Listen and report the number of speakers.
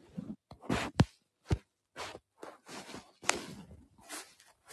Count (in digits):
0